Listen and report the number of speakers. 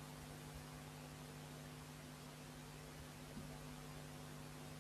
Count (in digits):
0